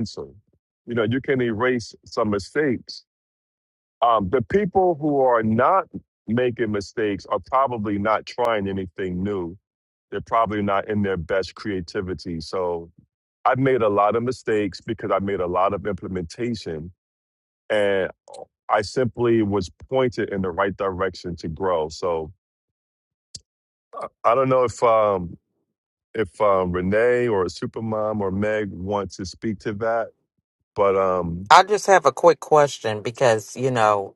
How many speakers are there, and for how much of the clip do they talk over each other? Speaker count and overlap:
two, no overlap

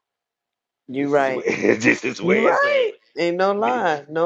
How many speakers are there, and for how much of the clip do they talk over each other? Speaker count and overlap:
two, about 29%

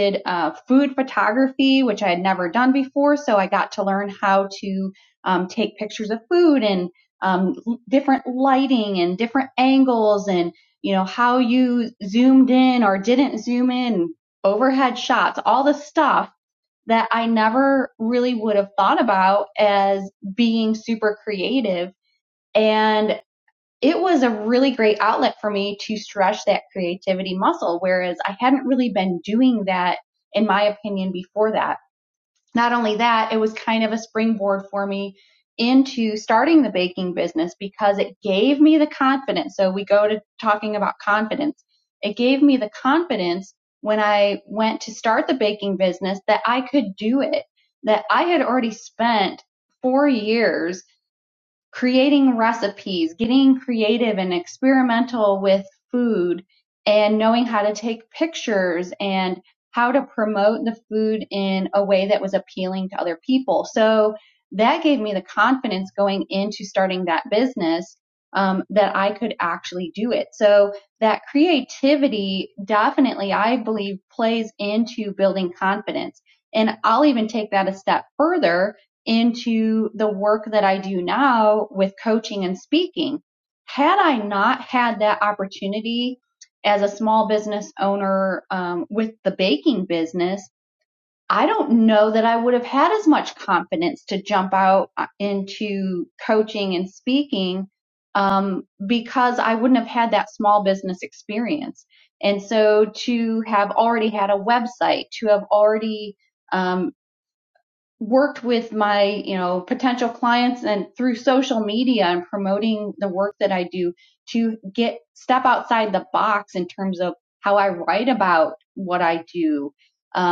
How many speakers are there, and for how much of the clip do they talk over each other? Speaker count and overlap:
one, no overlap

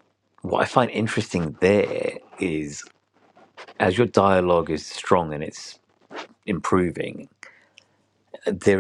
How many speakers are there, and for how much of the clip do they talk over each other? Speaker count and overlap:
one, no overlap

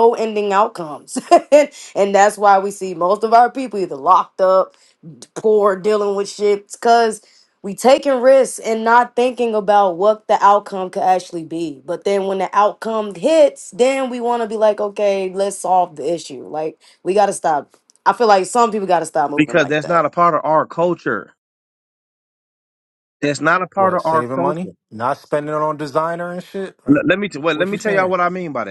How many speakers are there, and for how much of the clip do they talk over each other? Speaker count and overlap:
three, about 8%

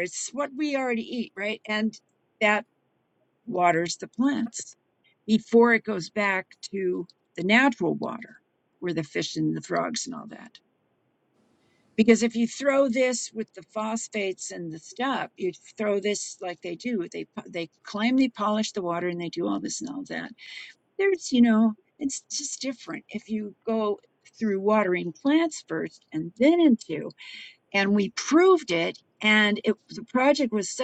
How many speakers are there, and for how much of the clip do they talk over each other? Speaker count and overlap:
one, no overlap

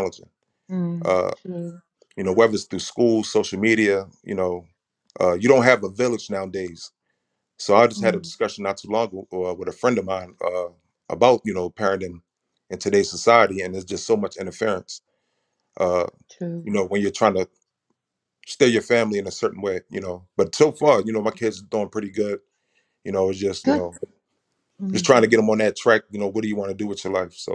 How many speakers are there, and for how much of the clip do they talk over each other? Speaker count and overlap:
two, about 2%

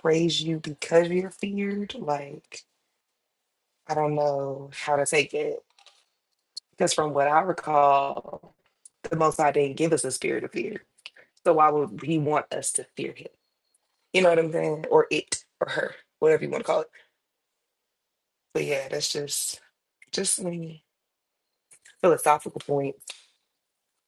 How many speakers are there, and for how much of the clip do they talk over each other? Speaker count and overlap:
one, no overlap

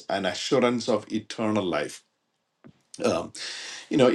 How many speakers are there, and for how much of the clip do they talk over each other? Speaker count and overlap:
one, no overlap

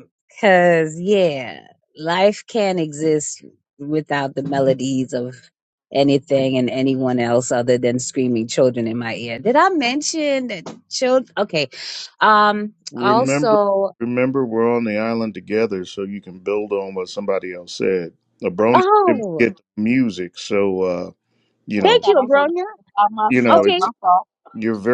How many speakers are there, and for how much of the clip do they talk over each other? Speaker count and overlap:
three, about 11%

